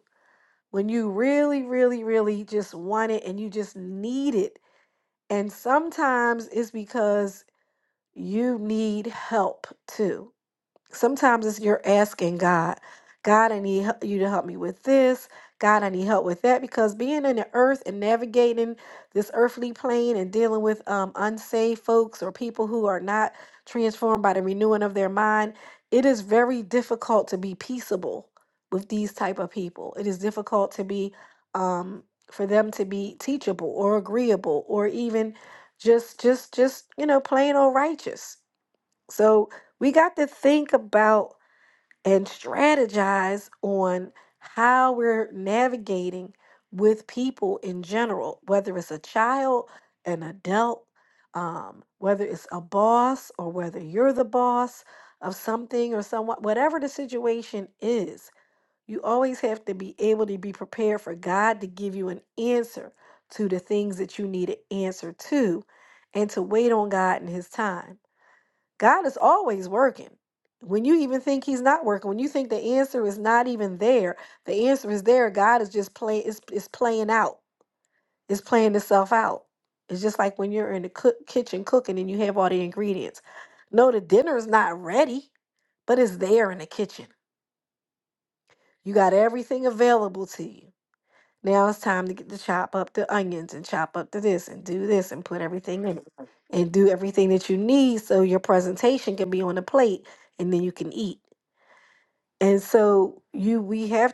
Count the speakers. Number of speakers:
one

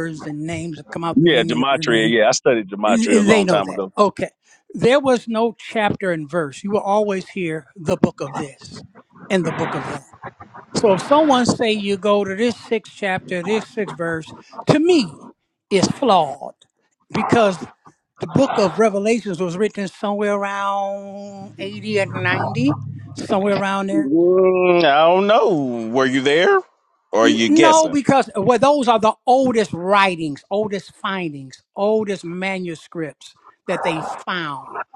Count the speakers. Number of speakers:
two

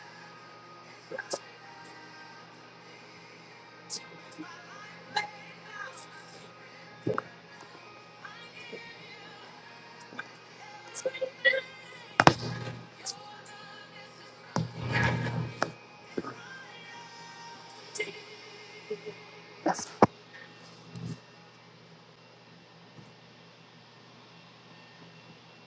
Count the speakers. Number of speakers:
zero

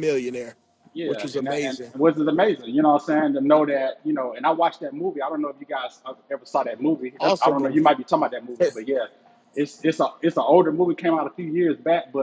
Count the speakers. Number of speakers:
two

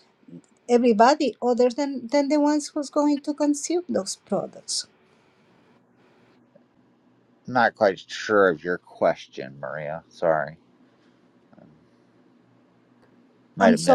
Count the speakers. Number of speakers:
two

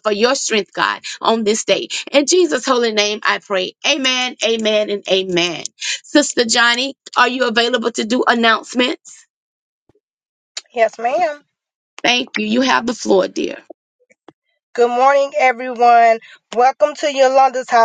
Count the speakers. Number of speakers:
two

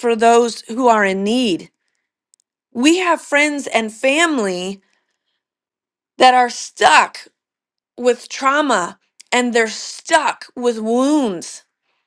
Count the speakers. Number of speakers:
one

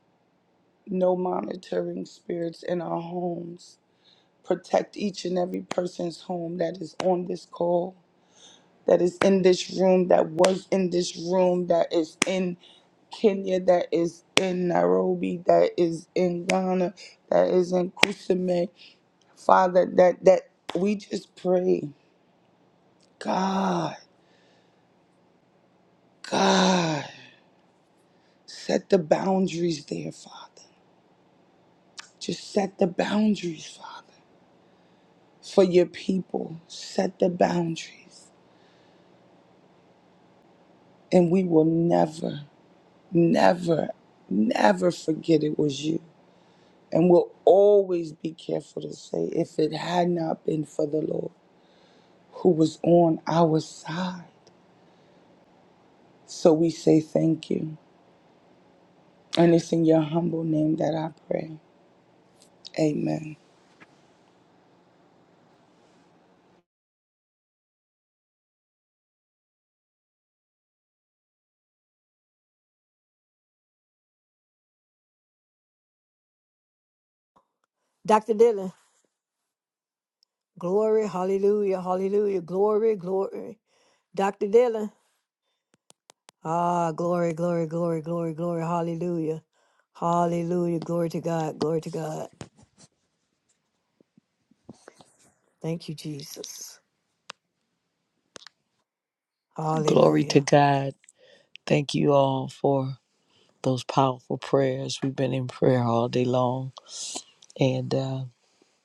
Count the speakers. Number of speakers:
three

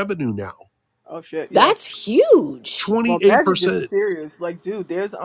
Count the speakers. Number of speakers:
three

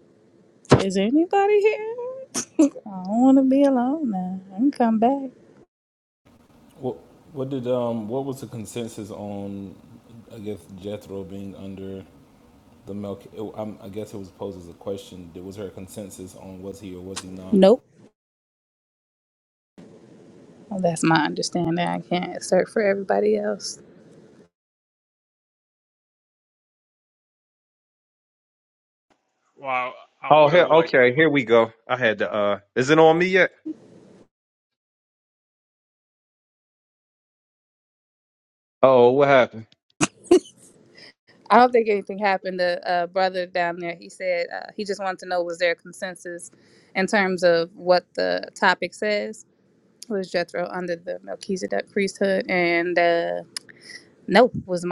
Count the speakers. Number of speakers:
four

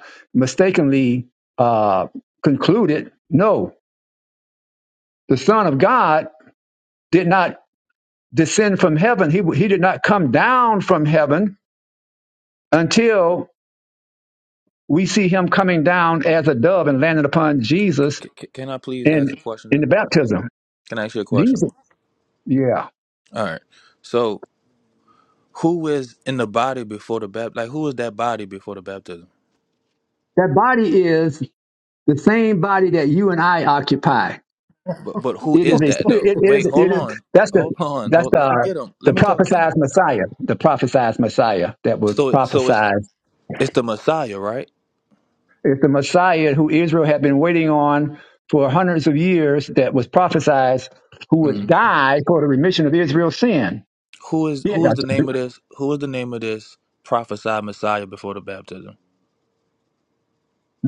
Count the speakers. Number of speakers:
two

